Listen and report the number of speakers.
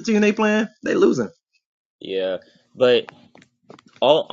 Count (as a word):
two